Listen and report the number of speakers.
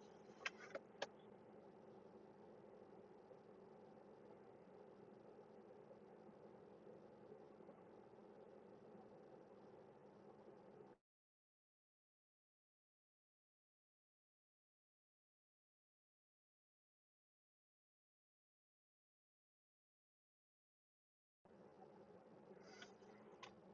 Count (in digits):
0